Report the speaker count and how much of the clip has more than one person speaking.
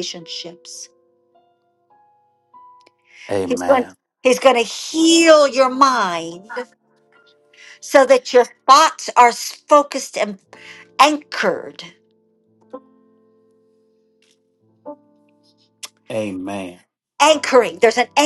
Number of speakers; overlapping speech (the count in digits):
2, about 2%